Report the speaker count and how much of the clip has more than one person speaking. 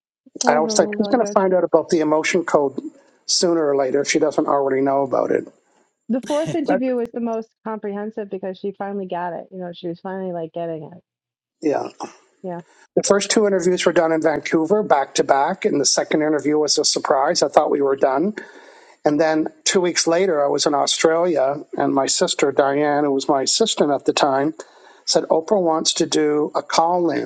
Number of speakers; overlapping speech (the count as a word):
two, about 4%